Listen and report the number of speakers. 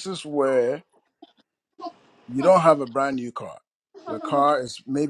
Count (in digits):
1